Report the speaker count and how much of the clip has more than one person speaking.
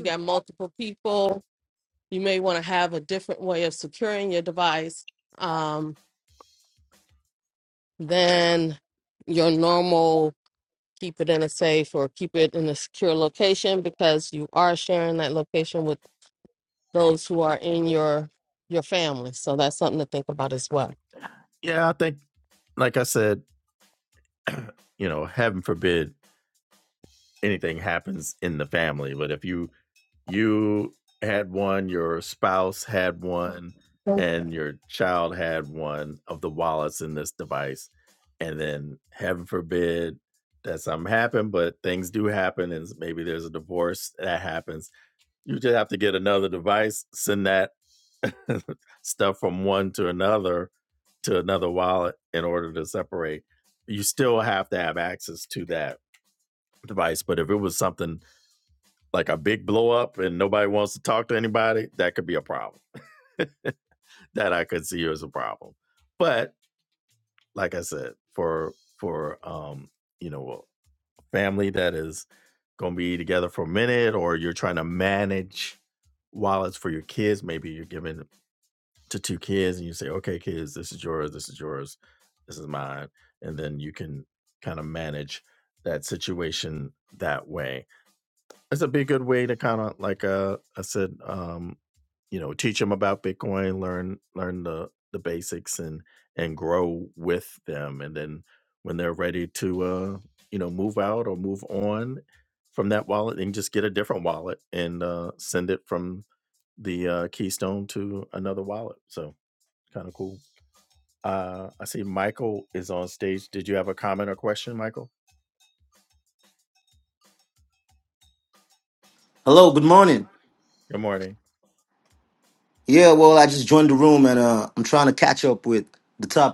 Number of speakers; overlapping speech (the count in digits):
3, no overlap